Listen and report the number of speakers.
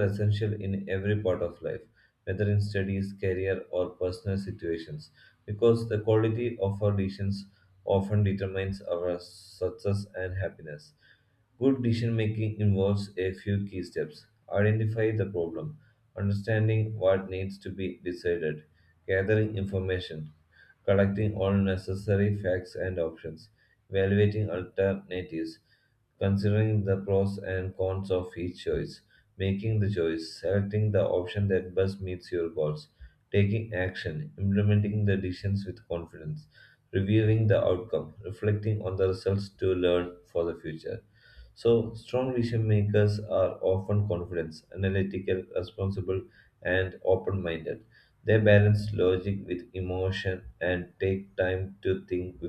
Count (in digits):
1